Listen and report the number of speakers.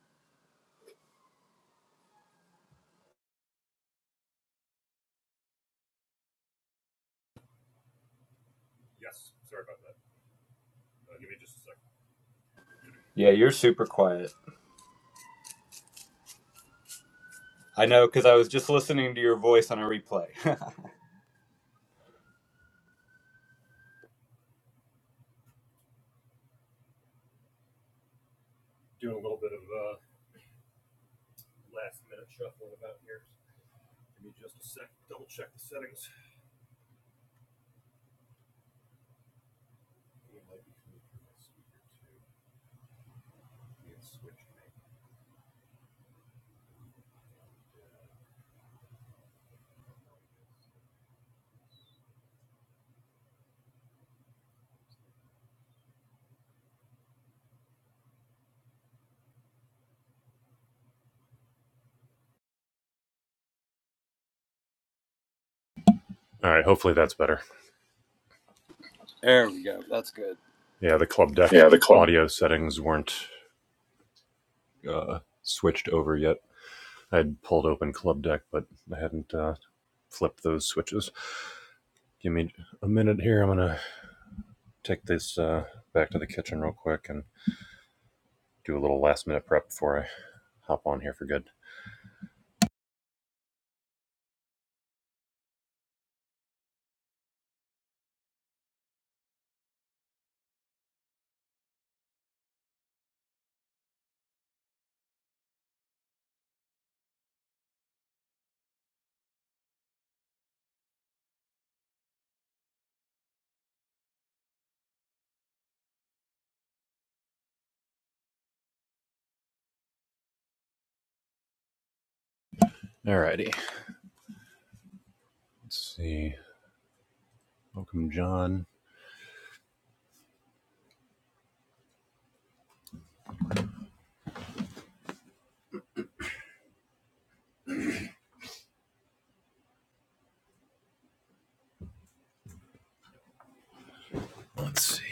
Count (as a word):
two